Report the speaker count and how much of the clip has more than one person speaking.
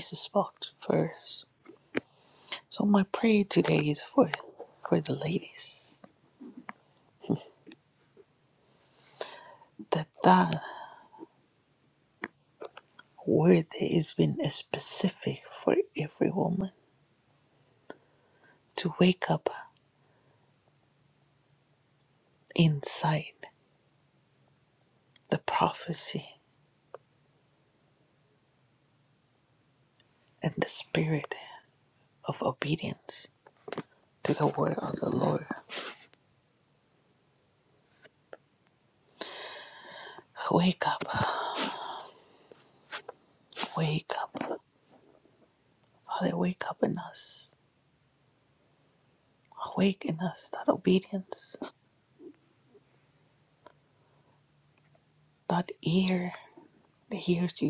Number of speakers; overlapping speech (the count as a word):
one, no overlap